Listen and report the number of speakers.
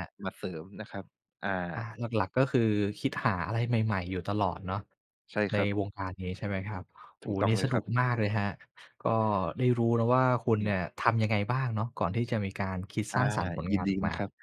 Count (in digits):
2